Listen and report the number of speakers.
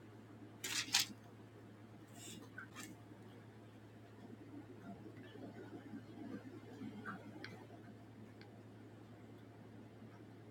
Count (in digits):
0